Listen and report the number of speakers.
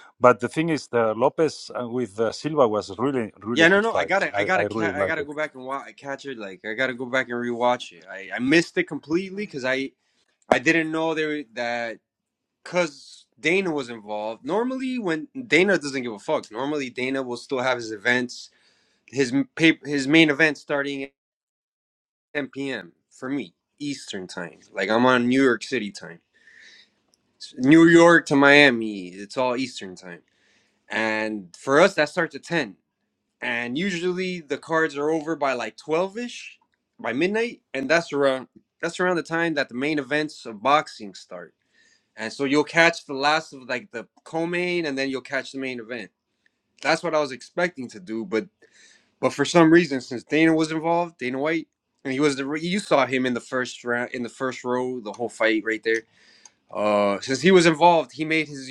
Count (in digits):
2